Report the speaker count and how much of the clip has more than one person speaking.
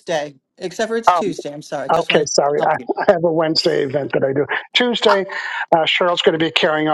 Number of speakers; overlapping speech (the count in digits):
2, about 10%